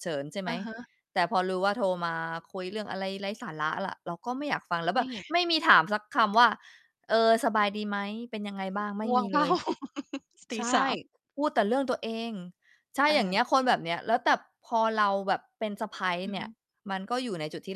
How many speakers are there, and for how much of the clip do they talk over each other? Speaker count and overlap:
2, about 9%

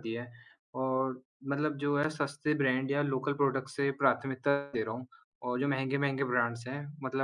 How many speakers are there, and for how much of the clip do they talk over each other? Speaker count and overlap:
1, no overlap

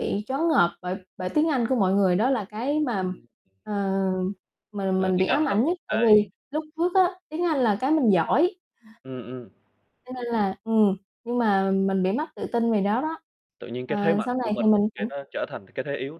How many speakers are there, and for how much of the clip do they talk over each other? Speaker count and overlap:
2, about 16%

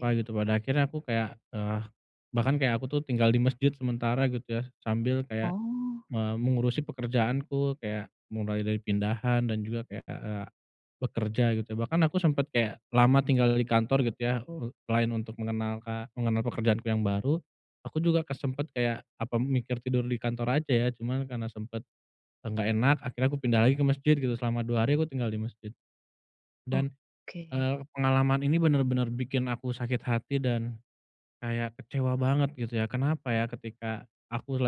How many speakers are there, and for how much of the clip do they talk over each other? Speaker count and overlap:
2, about 1%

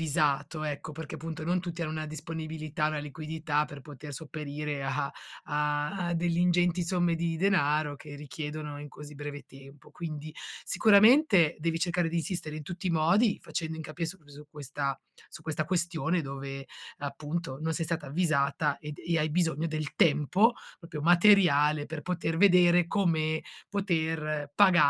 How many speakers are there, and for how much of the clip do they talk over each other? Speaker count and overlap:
1, no overlap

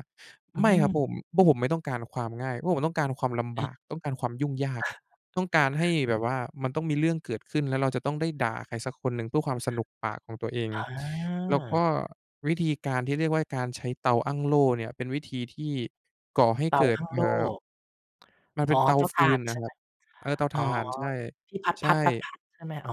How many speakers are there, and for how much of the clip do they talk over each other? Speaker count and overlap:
2, about 12%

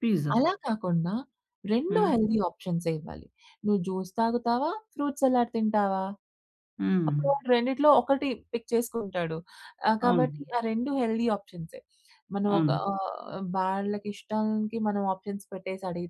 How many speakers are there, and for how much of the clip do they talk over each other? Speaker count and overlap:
2, about 8%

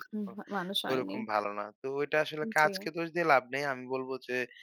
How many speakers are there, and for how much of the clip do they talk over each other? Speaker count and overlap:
2, about 19%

